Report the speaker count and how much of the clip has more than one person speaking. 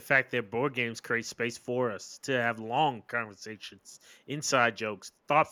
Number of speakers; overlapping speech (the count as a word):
one, no overlap